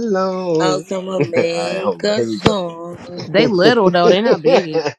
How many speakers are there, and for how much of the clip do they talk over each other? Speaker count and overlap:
three, about 33%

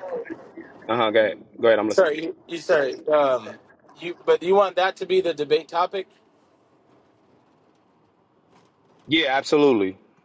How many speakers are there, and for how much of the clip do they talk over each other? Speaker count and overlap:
two, about 3%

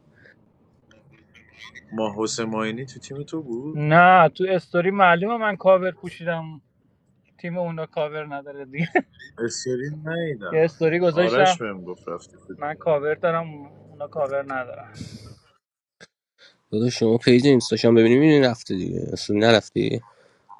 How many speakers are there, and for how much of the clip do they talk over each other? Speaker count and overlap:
three, about 3%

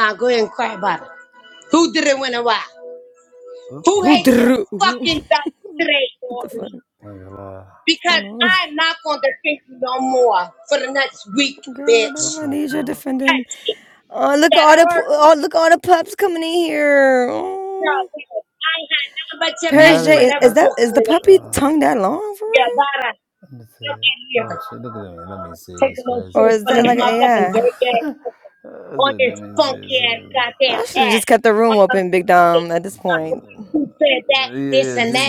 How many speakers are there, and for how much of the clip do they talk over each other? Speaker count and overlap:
three, about 36%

